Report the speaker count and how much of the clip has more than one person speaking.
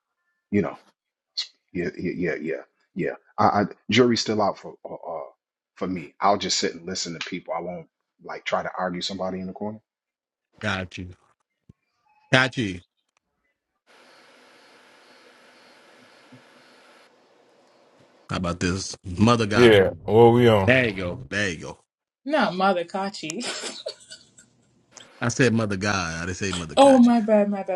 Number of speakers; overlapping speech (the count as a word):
four, about 2%